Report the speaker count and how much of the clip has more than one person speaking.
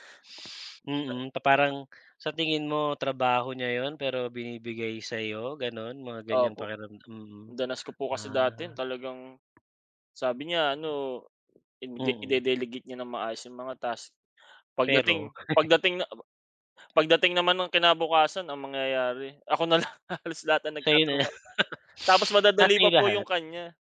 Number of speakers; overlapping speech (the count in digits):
2, about 13%